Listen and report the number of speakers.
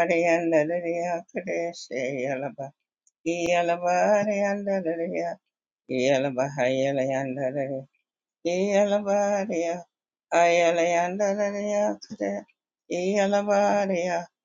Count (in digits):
1